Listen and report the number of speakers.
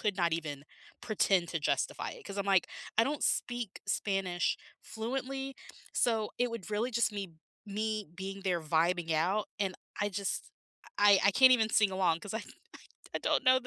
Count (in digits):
1